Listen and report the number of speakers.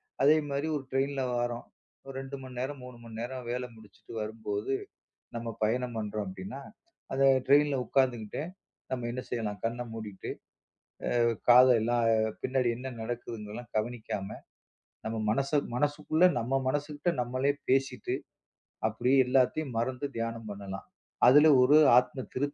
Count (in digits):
1